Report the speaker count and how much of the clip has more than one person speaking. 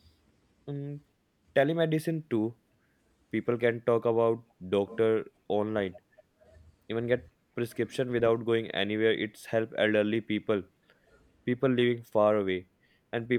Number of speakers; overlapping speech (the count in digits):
1, no overlap